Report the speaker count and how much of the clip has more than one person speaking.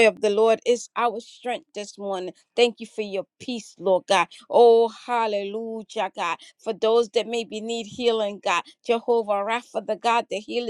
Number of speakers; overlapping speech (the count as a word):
one, no overlap